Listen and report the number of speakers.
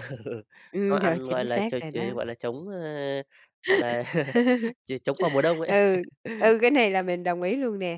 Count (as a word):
two